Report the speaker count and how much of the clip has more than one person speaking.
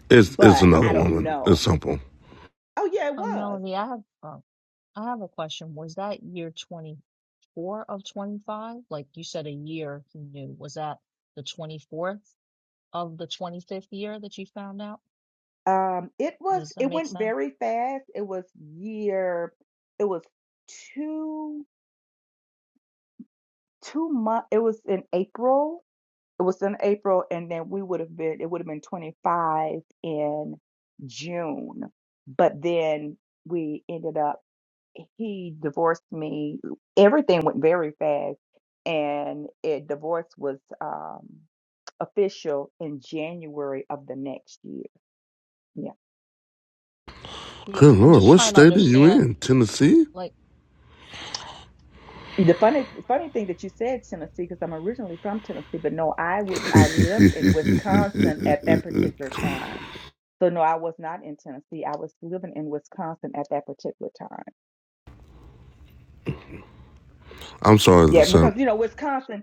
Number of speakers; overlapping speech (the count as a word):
three, about 7%